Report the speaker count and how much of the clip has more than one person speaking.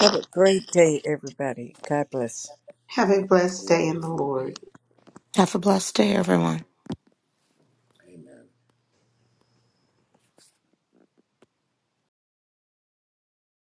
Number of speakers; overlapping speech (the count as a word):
three, about 5%